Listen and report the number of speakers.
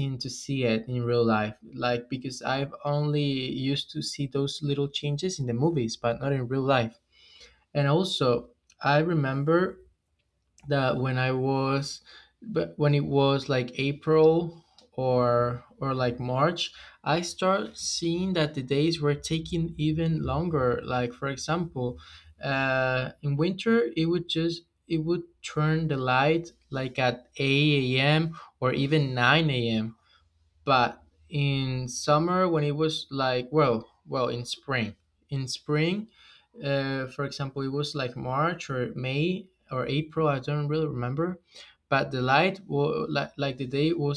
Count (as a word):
one